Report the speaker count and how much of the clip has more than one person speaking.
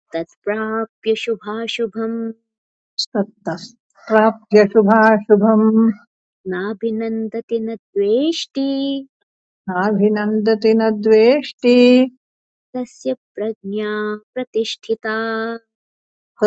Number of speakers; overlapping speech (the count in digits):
2, no overlap